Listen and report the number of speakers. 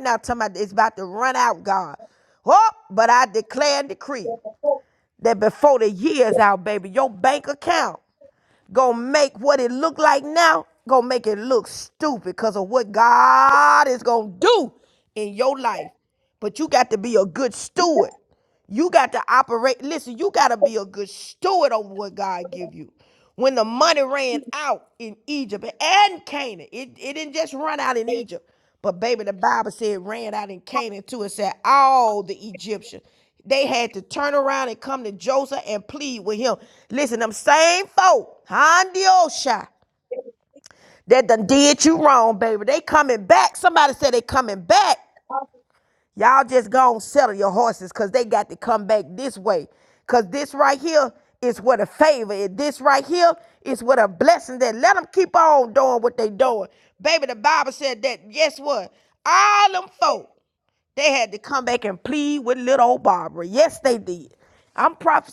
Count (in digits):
1